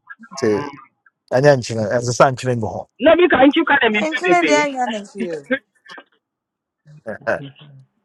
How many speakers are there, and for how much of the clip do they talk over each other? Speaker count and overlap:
3, about 5%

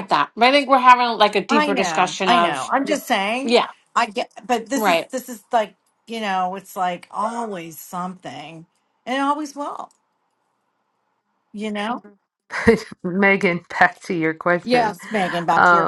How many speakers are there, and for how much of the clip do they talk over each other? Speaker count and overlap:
3, about 14%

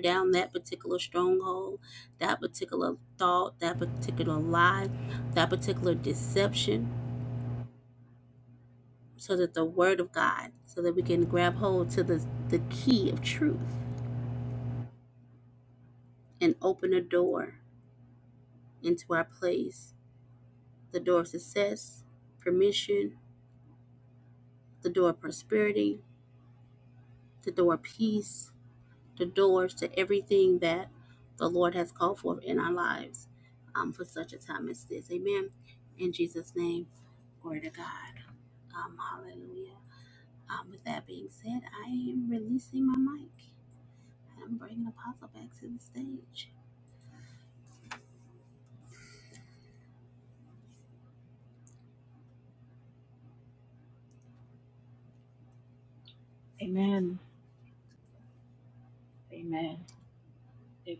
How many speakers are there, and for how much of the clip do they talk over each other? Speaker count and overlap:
2, no overlap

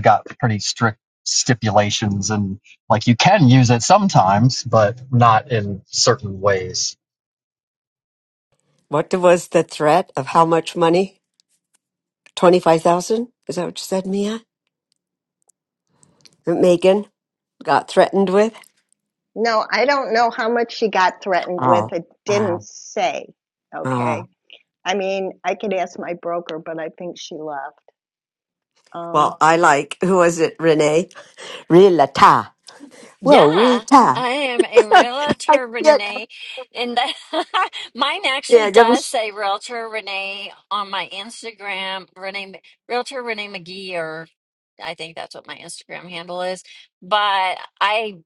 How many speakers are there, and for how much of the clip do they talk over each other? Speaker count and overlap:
4, about 7%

